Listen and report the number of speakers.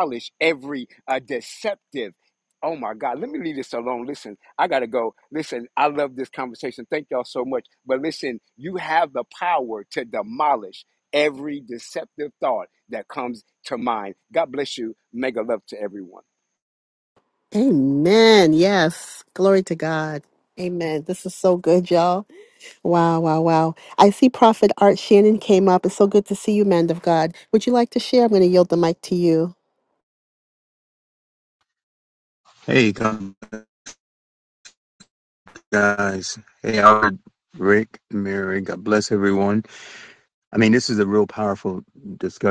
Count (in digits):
3